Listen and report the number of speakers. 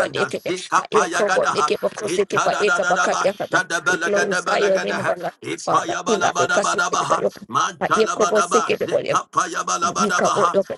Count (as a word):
two